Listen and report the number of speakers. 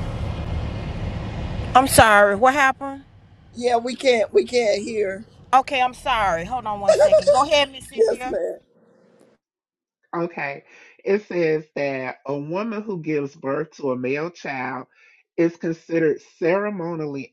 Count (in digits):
3